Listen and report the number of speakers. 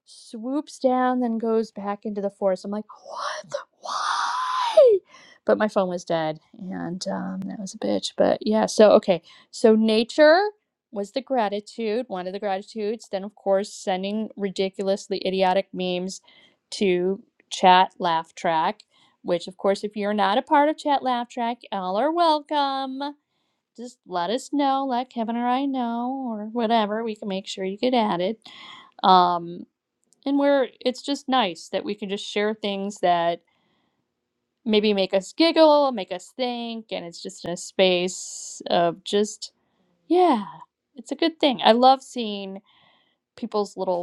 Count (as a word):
one